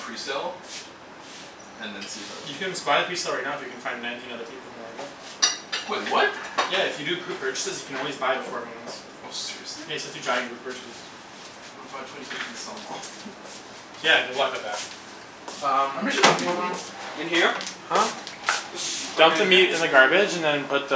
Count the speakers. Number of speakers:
3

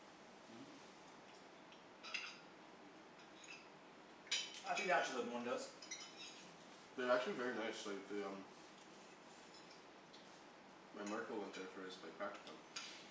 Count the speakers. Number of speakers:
2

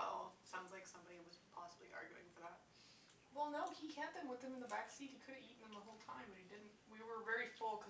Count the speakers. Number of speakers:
2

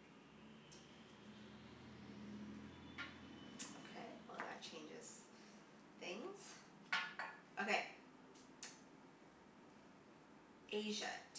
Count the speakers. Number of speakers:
1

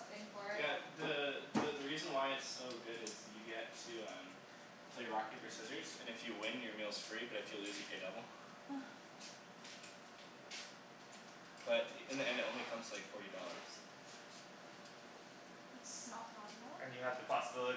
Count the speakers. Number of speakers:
3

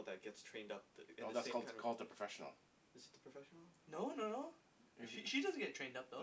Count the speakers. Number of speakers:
3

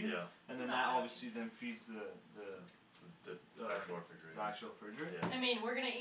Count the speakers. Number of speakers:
3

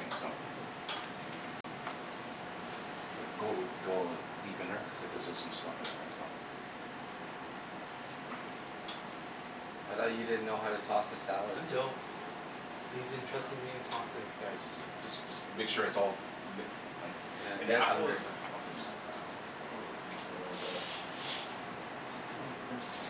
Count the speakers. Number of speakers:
3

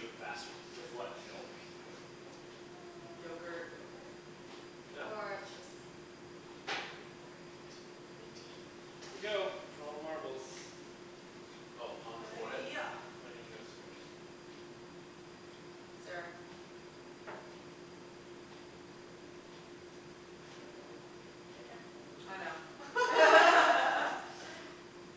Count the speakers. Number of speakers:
4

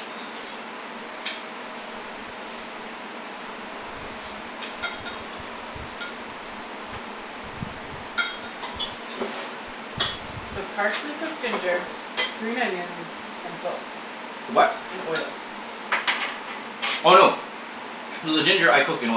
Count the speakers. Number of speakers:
2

